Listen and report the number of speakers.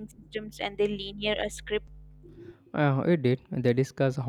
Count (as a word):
two